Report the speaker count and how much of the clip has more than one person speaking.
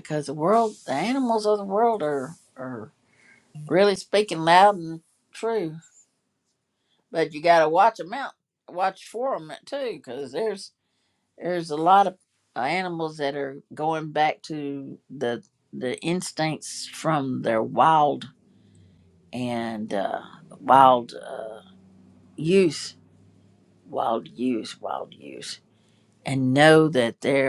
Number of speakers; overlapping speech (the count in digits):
1, no overlap